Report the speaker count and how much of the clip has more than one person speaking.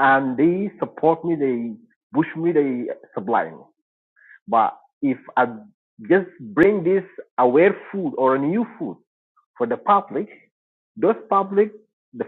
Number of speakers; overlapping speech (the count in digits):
1, no overlap